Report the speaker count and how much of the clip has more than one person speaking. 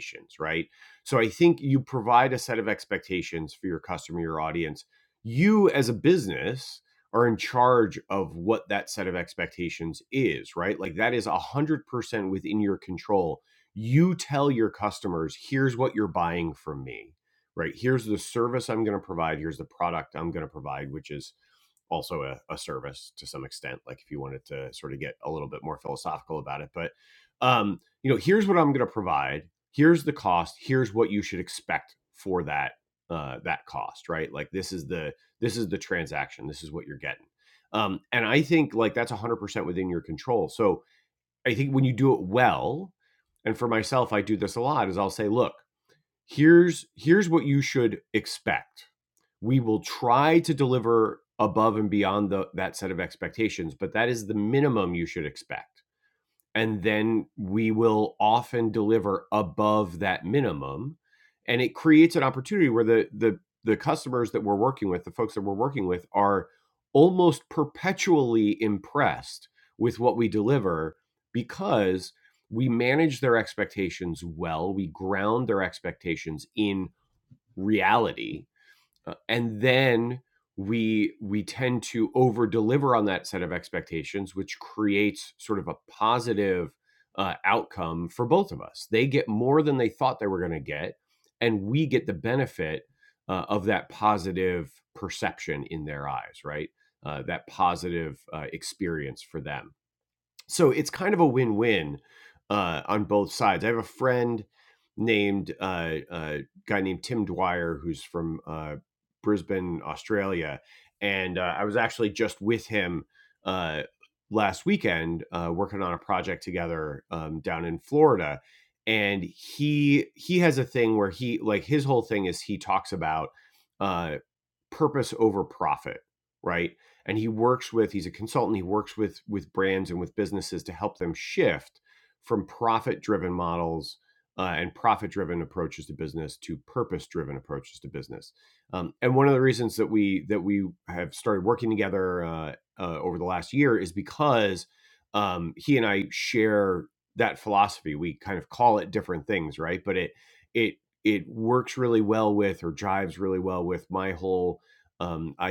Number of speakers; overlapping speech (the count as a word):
one, no overlap